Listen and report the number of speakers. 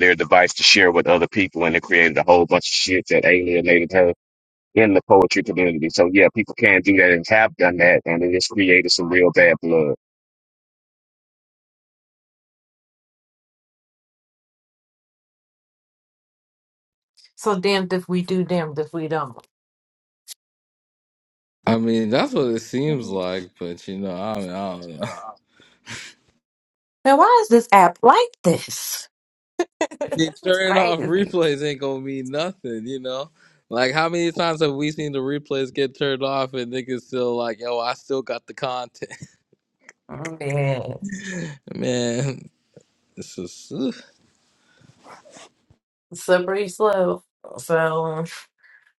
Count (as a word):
three